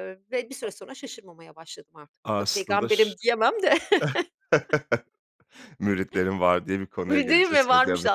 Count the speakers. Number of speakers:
two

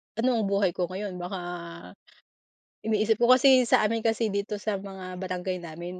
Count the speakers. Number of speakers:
one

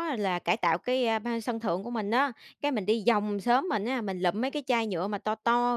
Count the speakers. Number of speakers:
one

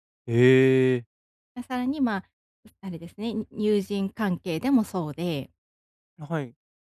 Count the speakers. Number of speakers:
two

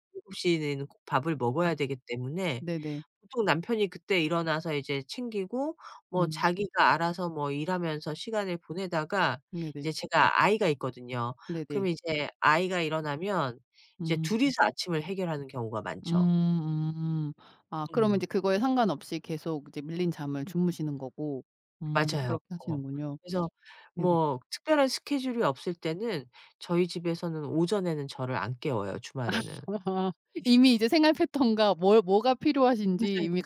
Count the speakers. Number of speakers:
two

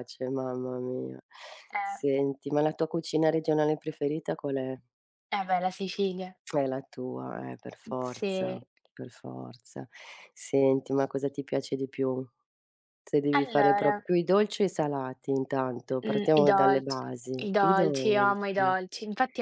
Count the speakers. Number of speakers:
two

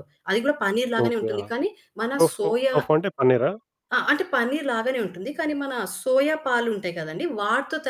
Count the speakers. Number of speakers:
two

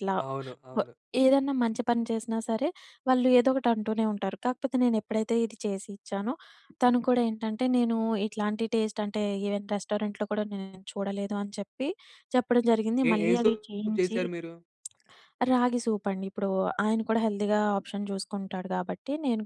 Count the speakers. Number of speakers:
two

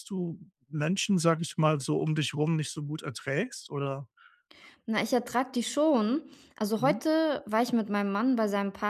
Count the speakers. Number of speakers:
two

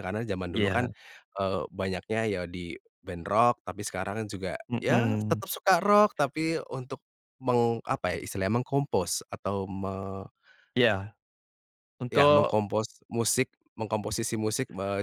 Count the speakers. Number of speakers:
two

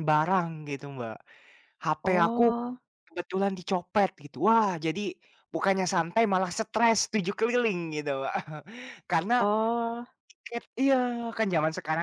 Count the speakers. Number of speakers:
two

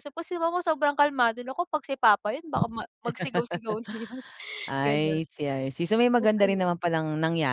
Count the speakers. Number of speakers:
two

